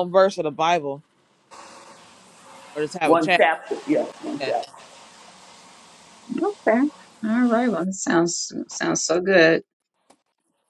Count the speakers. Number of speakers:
3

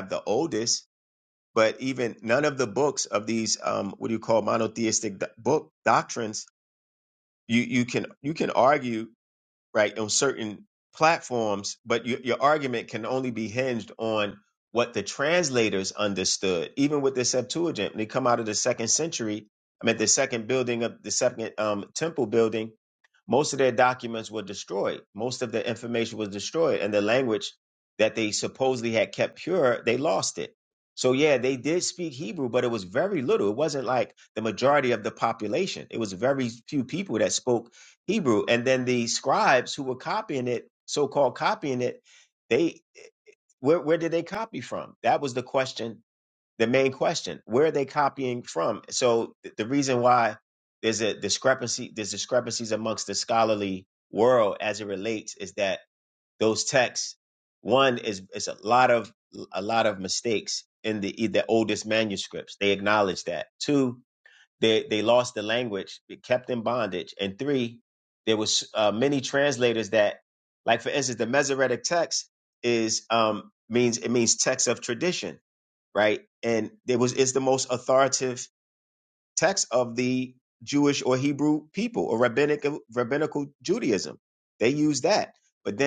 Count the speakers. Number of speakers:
1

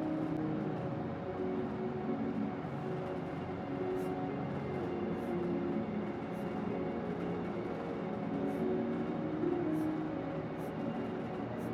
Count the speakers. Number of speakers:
0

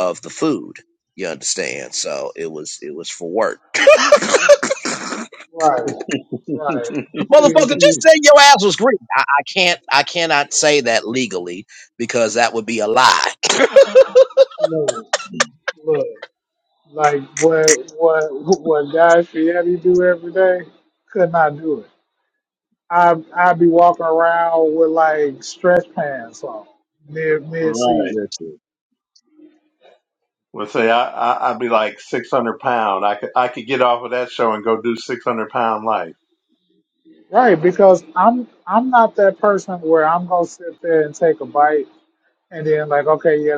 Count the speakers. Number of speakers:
3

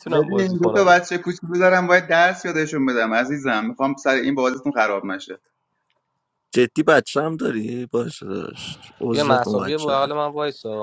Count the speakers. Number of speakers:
3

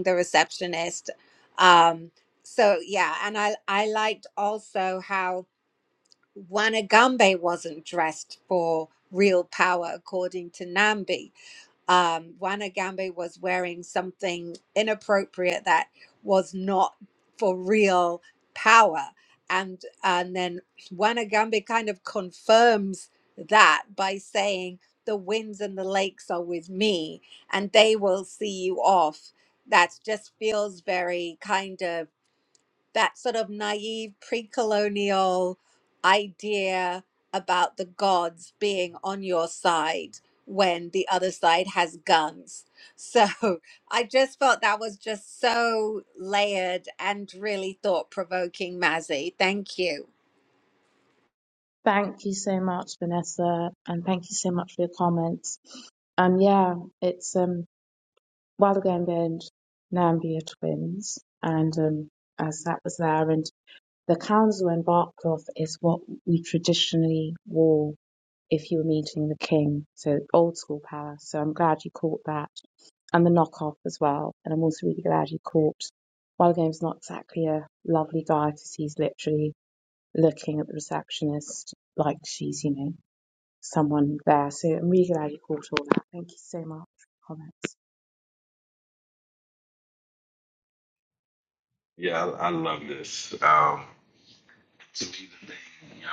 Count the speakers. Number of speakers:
3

